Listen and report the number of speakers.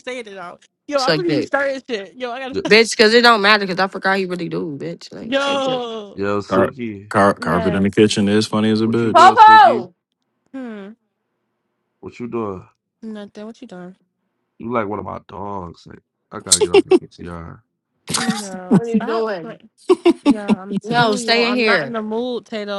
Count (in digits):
4